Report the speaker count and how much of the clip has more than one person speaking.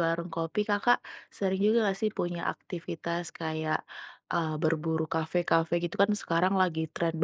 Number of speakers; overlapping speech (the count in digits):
1, no overlap